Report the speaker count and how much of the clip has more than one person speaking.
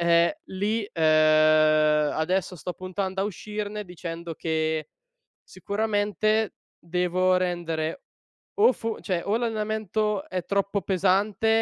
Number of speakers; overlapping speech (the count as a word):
one, no overlap